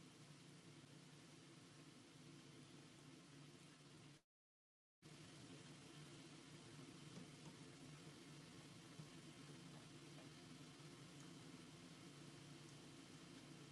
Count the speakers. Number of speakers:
0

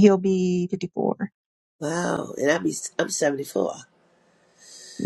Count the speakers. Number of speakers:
2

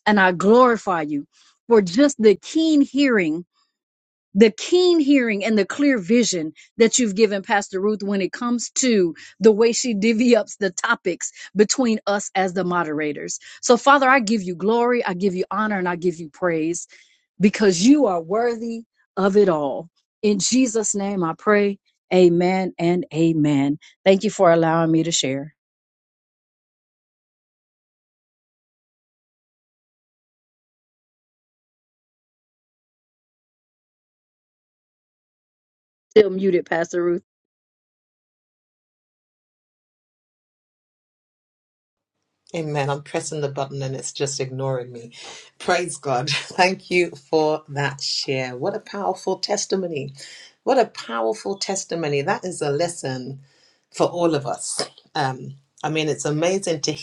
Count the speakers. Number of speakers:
2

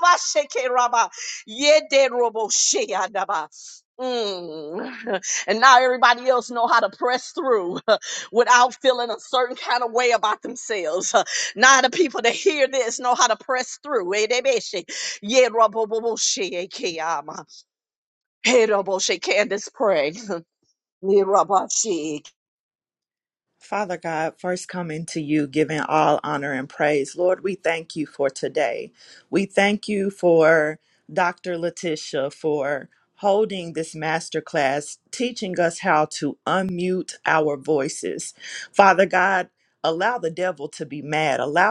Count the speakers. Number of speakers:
2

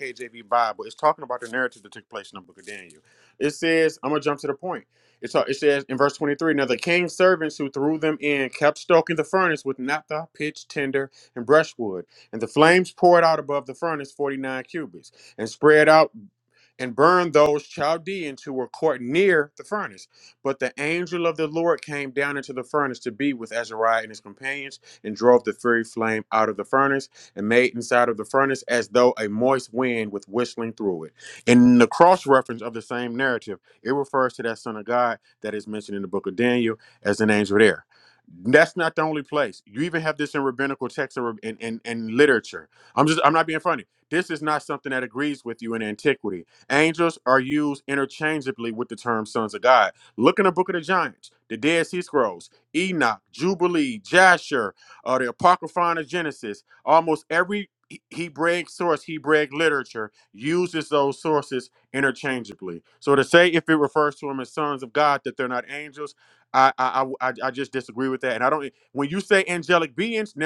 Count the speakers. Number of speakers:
1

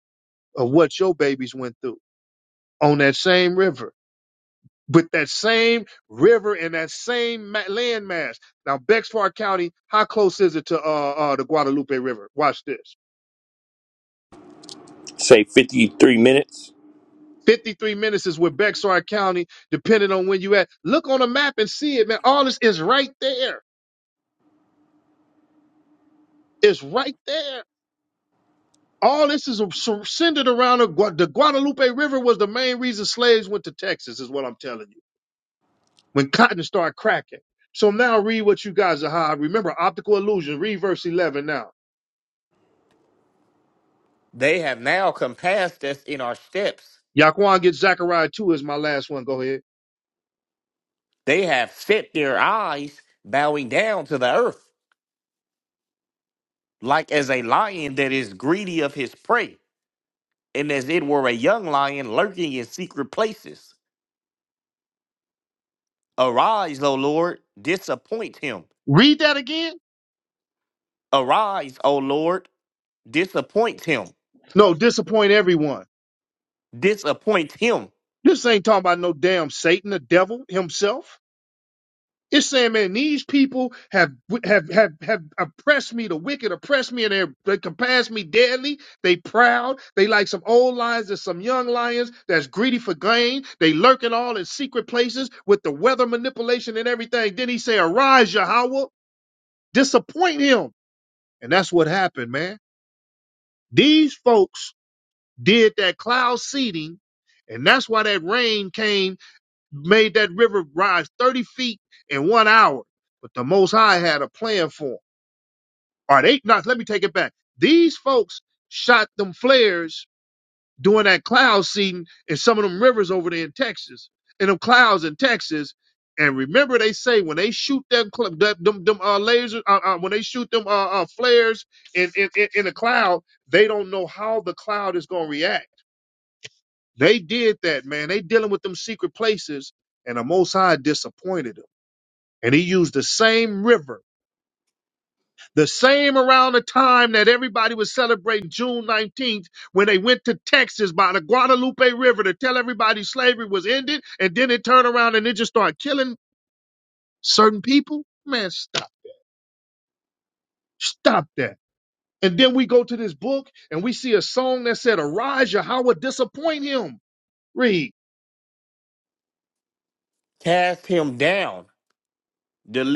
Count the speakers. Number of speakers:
3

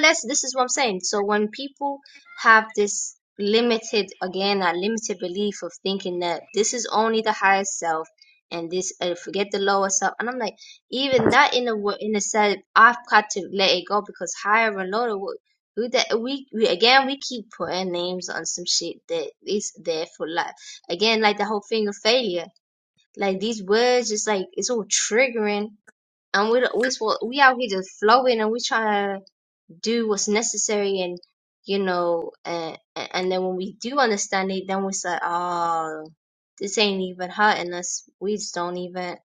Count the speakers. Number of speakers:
1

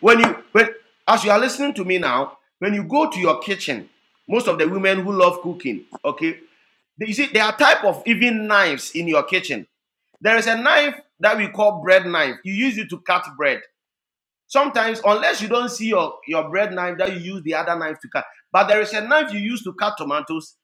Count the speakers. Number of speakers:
1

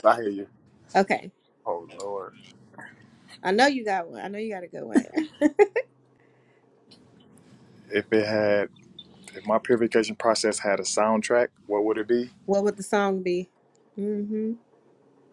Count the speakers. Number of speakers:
2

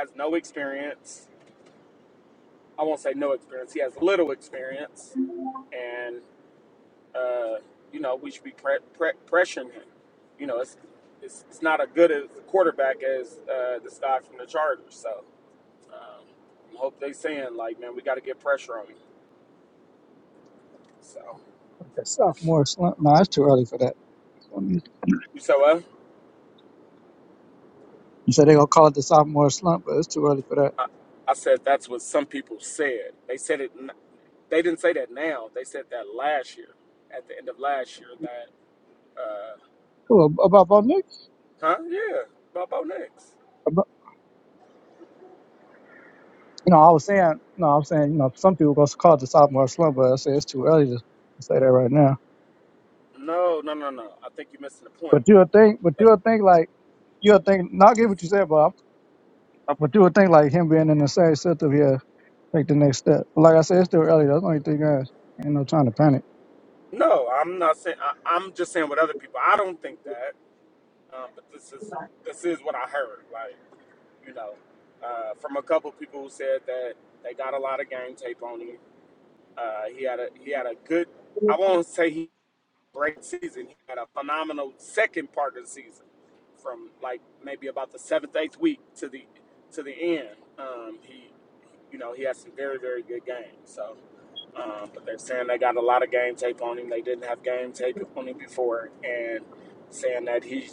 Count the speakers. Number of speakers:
2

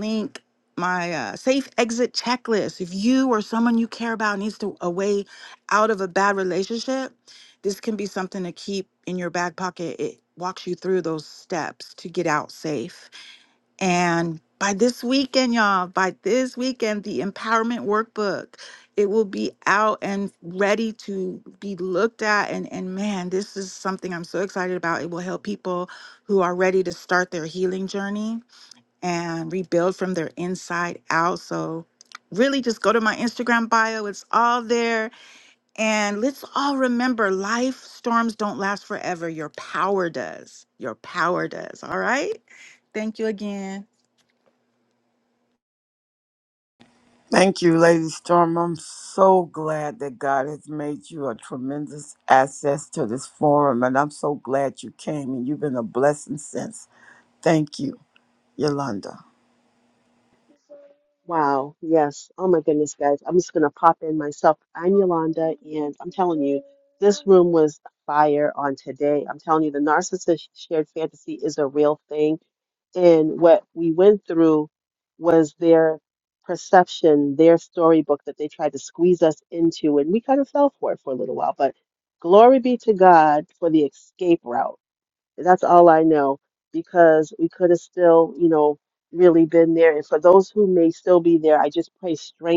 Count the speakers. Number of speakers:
3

